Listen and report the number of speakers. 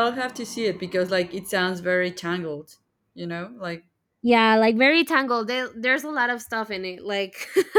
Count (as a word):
two